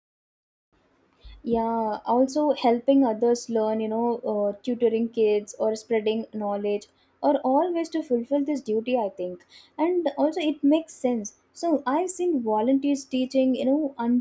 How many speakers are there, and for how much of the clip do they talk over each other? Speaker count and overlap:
1, no overlap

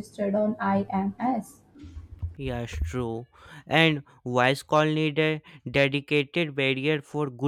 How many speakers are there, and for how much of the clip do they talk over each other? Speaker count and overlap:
2, no overlap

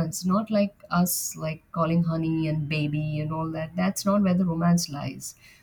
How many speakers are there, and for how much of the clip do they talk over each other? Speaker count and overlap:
1, no overlap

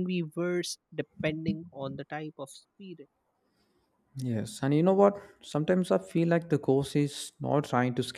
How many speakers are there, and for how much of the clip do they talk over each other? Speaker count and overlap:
2, no overlap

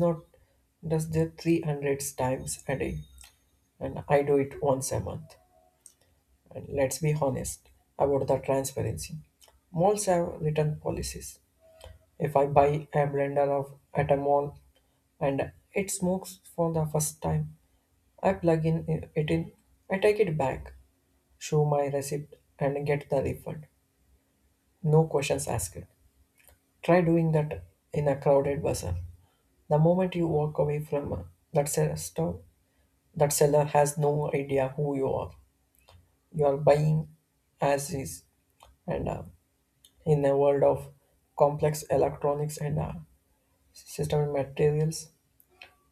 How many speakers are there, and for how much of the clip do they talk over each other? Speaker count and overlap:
1, no overlap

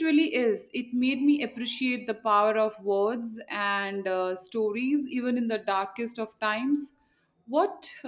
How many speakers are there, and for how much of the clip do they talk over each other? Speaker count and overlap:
1, no overlap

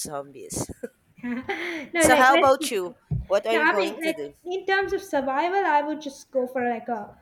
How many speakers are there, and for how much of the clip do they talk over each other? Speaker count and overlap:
2, about 21%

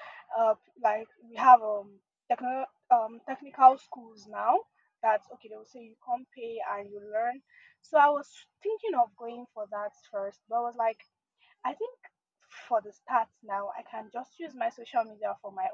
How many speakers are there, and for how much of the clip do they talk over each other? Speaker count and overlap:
1, no overlap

